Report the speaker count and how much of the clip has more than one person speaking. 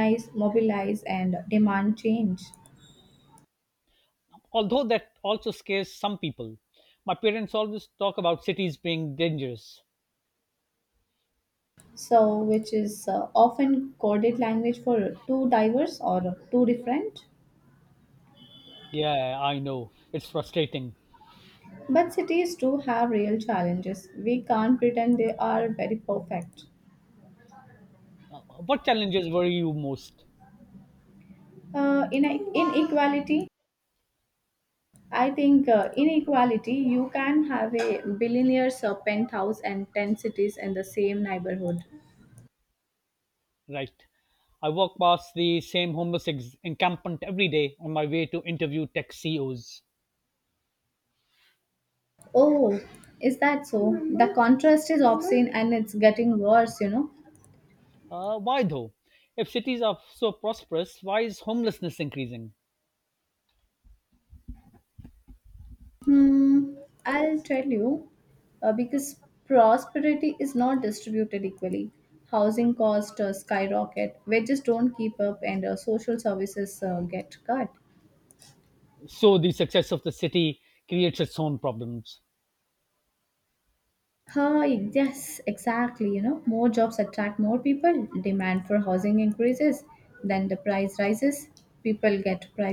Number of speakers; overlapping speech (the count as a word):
two, no overlap